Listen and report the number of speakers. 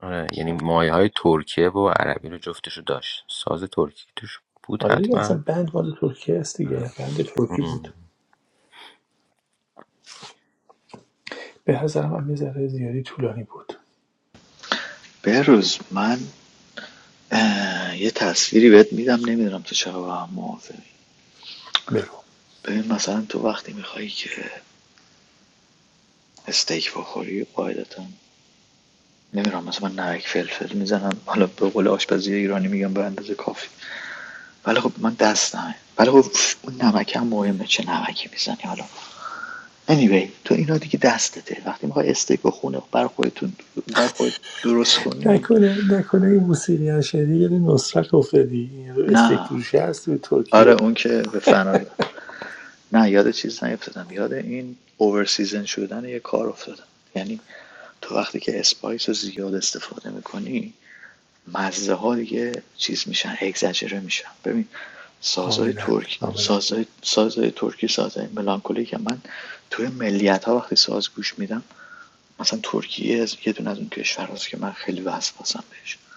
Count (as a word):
three